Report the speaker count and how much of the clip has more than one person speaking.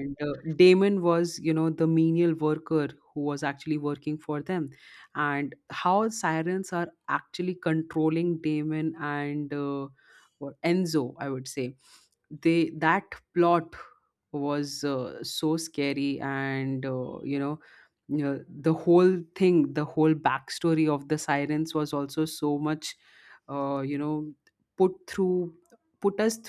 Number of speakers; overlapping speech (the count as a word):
one, no overlap